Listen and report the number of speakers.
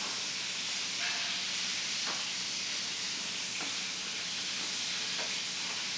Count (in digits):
0